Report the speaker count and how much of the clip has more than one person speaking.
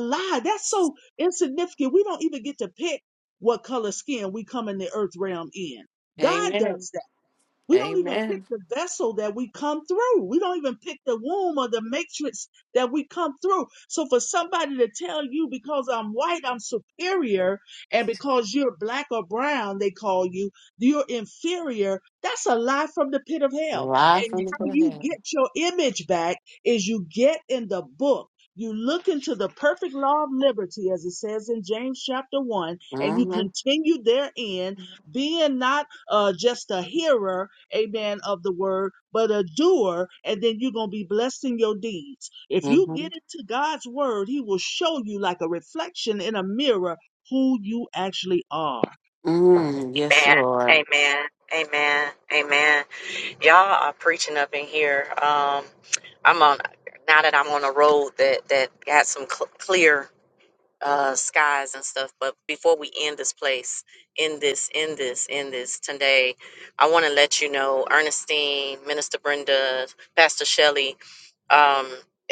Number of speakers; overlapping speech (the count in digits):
3, about 6%